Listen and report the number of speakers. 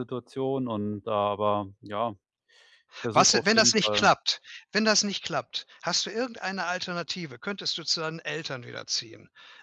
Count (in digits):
2